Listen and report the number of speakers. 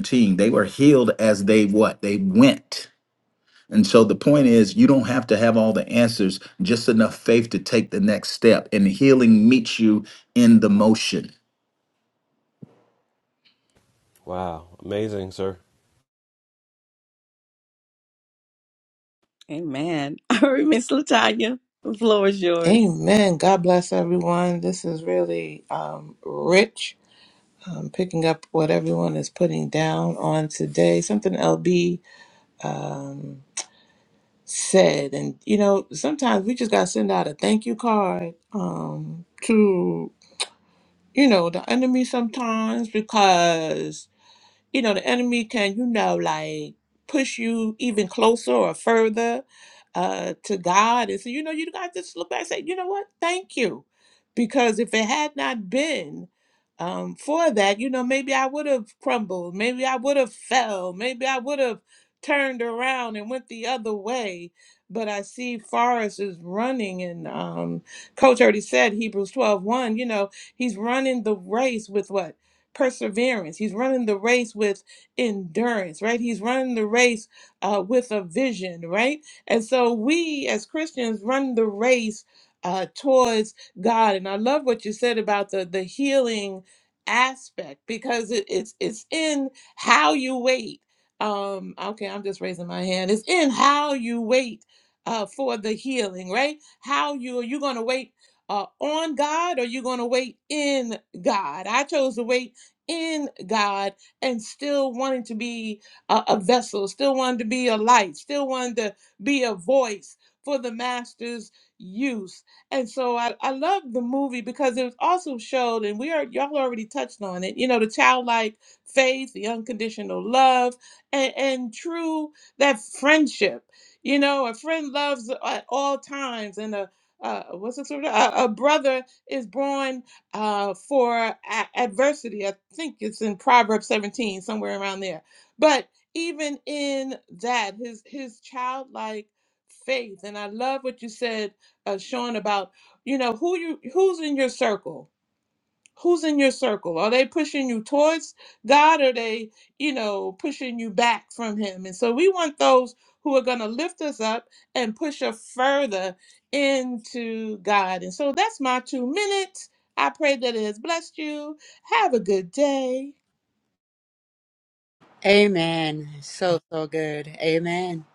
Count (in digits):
5